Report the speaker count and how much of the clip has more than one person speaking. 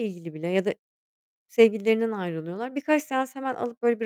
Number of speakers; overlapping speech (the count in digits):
1, no overlap